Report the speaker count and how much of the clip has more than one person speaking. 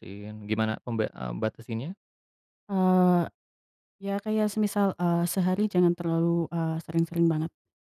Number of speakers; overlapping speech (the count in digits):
2, no overlap